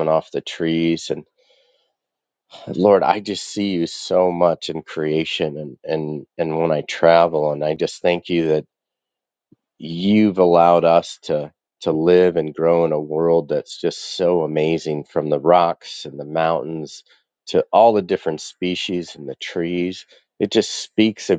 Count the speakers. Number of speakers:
one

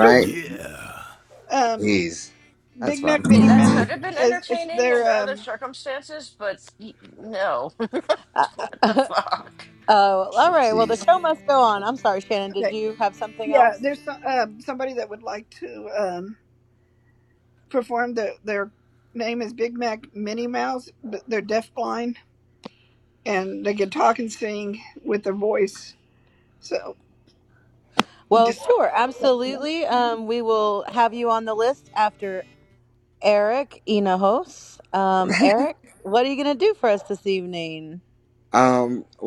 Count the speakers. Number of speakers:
five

